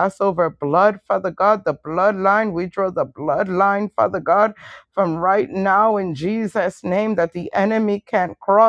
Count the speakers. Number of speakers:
one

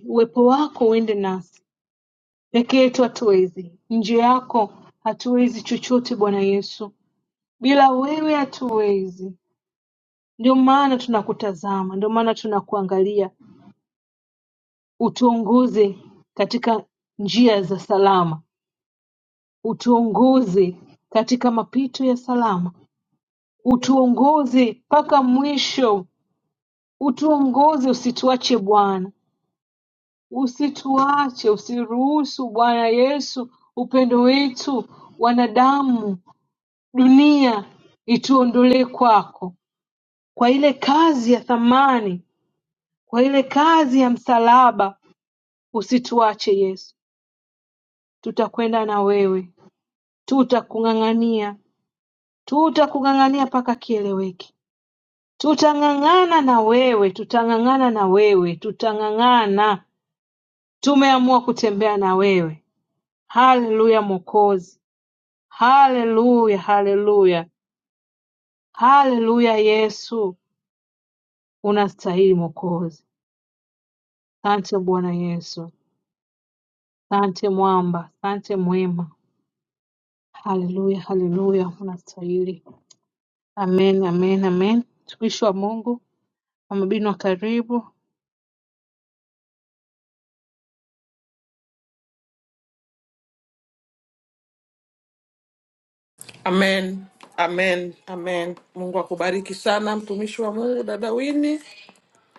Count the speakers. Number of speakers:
two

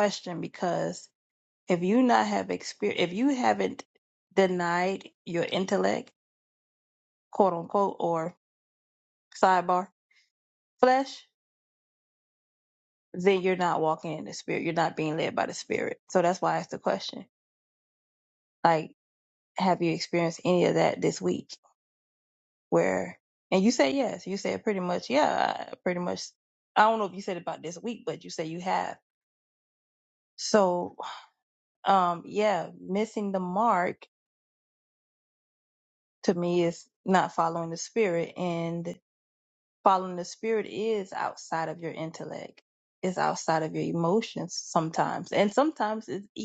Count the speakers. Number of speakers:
one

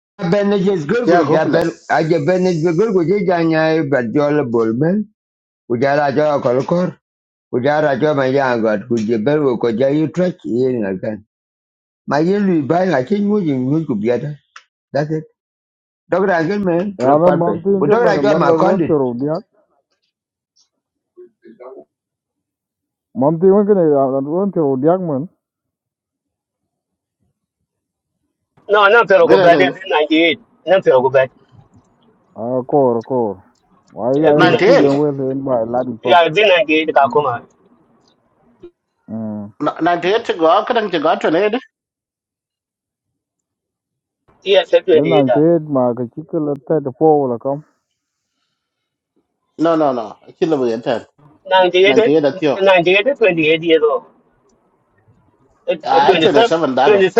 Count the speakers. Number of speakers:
four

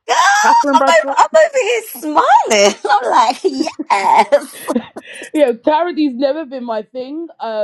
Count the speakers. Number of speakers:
two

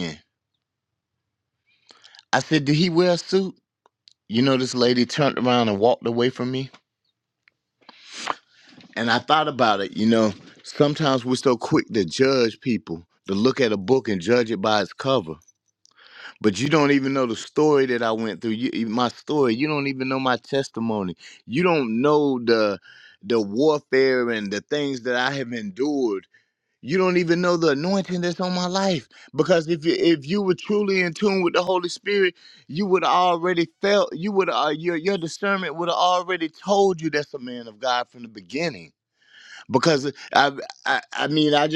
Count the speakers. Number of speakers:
one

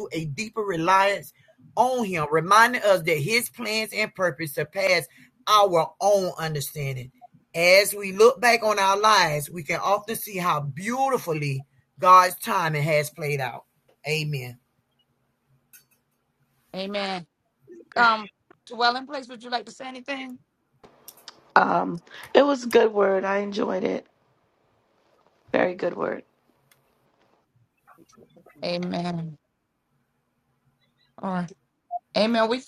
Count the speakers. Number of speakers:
three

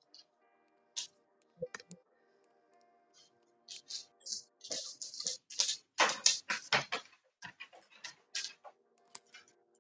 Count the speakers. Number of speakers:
zero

